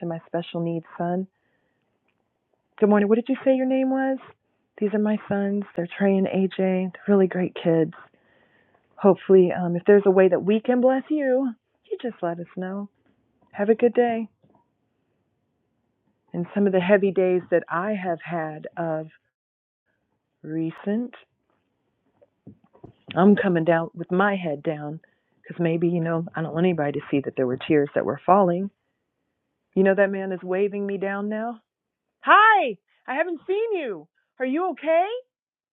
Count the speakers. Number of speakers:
one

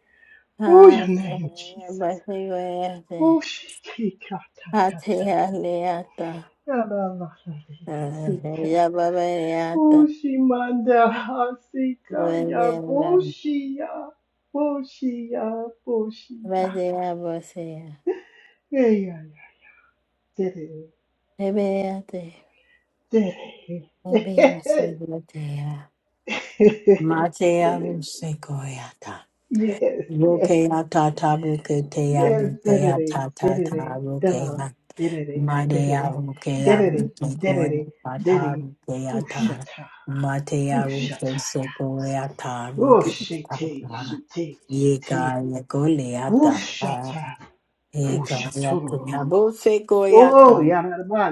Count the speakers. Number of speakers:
two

